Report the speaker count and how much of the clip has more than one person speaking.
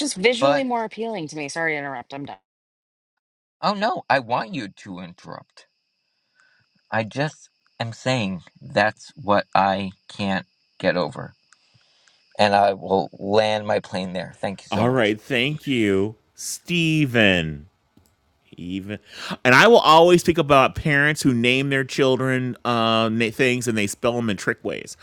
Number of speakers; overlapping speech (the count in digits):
3, about 2%